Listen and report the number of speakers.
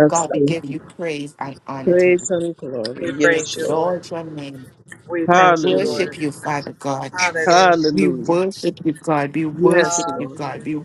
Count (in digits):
3